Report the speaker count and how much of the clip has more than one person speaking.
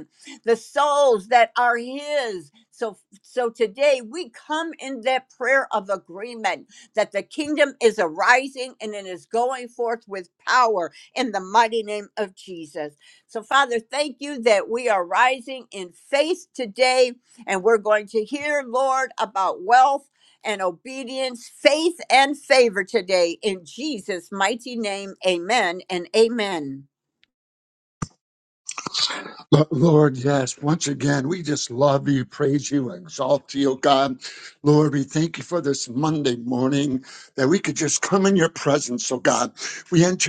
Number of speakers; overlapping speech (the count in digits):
2, no overlap